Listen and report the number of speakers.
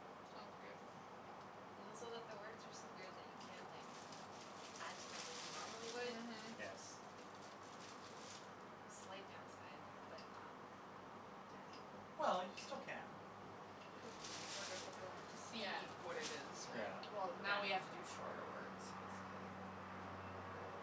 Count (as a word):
four